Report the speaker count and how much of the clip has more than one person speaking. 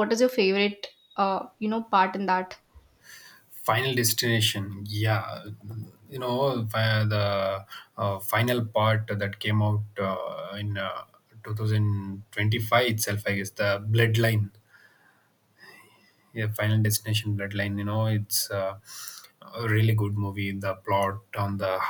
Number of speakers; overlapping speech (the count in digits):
2, no overlap